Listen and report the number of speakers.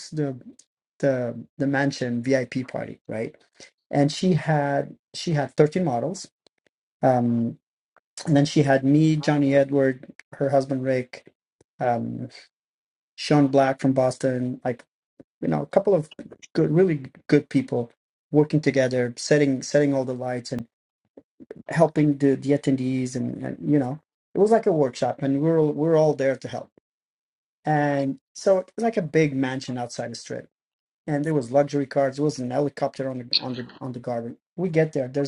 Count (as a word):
one